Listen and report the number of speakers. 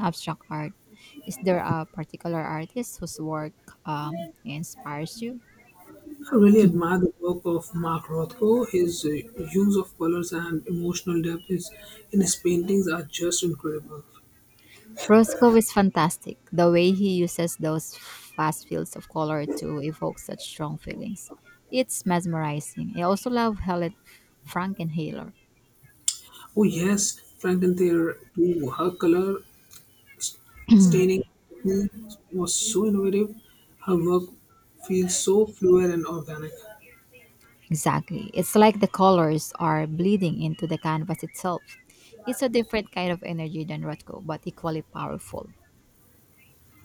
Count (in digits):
2